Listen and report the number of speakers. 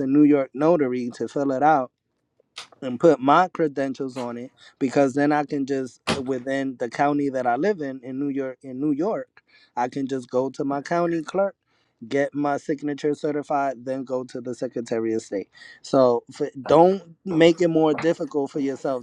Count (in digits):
1